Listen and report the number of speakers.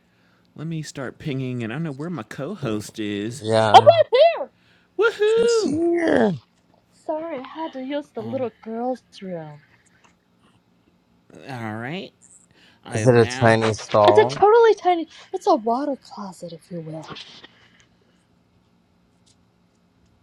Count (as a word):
three